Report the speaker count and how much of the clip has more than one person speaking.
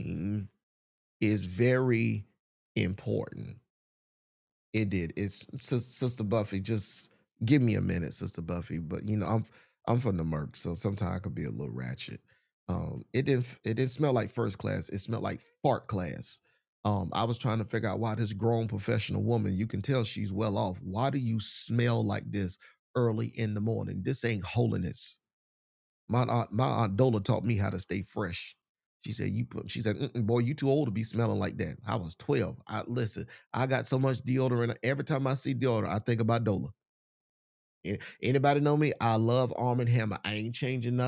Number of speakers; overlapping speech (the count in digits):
1, no overlap